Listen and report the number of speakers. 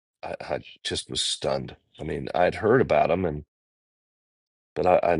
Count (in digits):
1